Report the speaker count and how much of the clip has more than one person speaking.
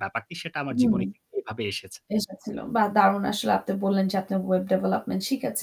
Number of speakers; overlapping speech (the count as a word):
two, about 6%